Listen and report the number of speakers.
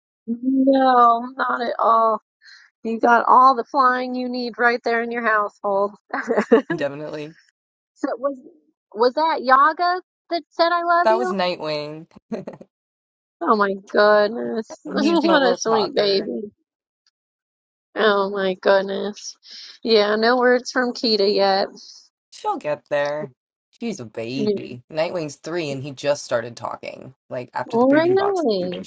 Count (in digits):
2